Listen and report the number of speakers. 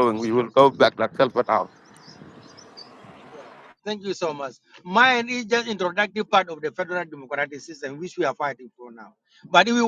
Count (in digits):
2